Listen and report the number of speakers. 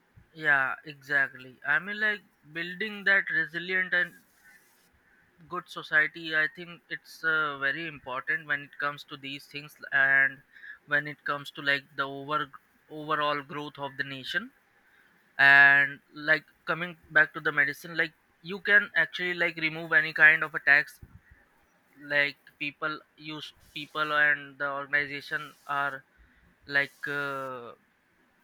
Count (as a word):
one